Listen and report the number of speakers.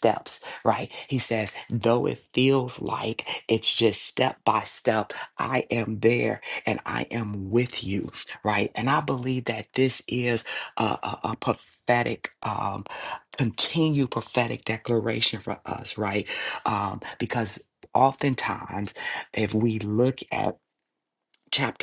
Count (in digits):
1